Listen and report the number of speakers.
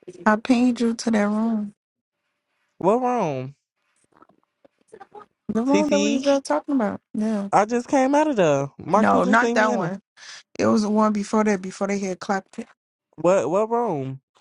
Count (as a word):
two